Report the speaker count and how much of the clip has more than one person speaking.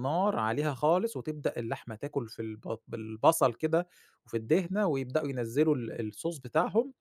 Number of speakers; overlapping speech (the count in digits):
1, no overlap